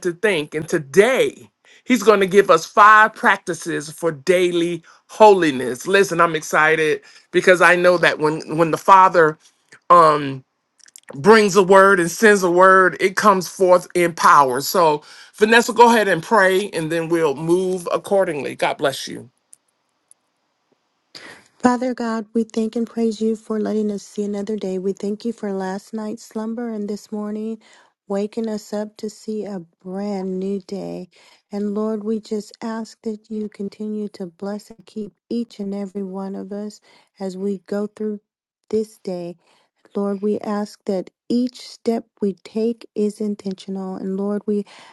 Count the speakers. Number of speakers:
2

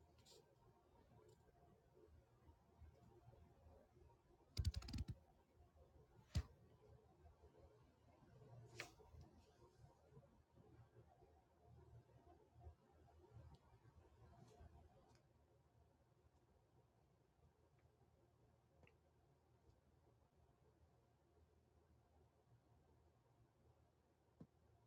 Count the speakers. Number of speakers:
0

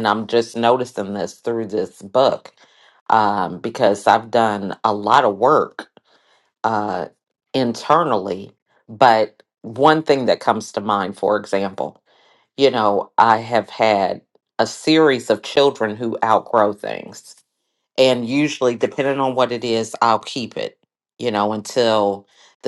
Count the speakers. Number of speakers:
1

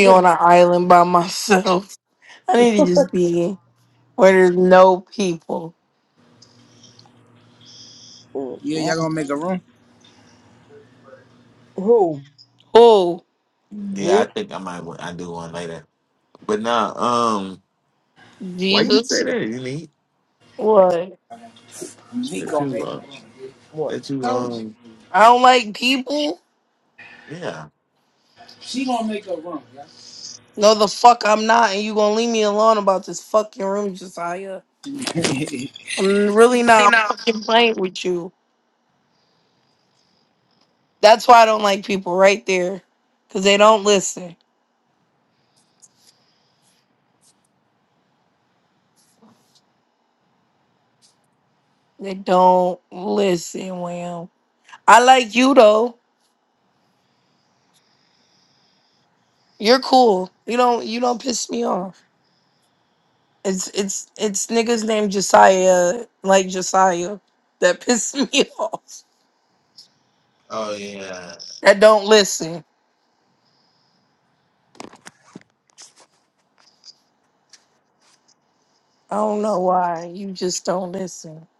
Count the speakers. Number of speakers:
4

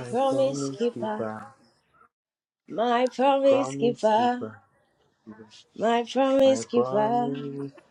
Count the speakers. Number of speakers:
2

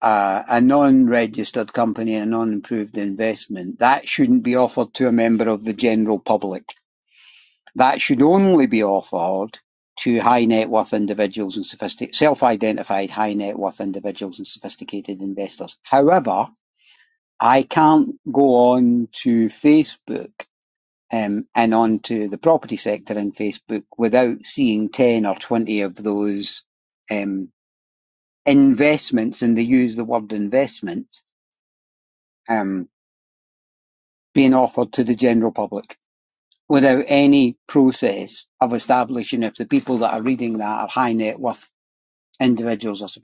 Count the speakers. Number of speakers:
1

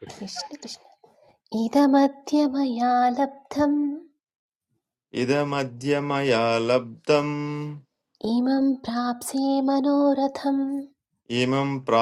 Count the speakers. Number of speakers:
2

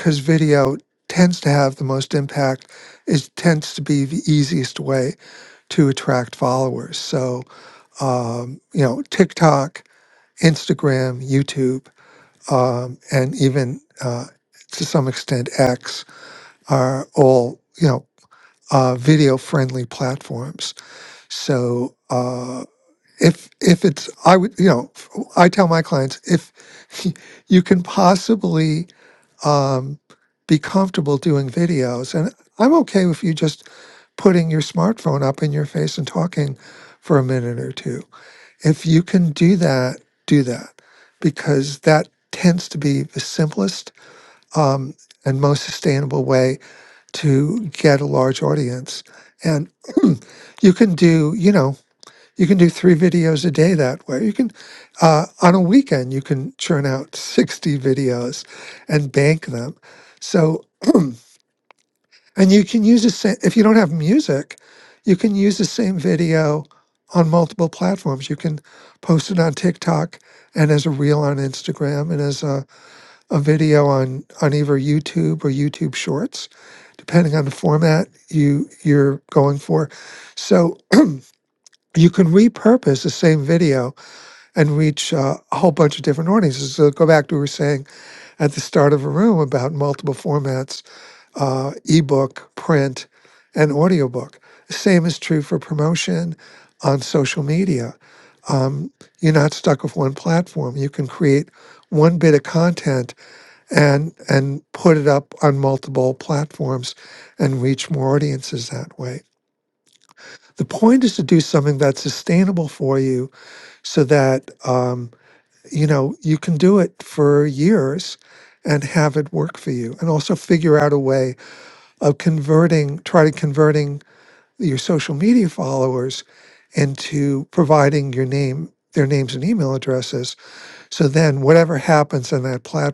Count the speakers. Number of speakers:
1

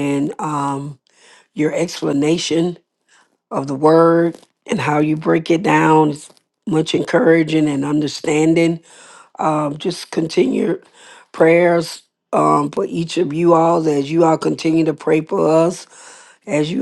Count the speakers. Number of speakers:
1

